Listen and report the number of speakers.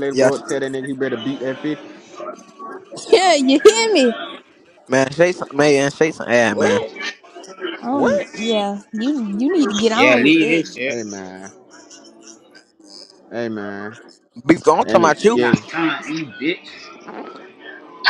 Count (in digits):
4